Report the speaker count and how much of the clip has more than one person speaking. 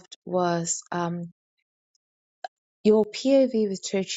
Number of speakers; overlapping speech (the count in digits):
1, no overlap